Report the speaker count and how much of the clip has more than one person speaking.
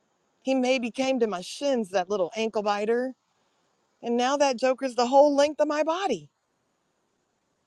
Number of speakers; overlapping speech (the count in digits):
1, no overlap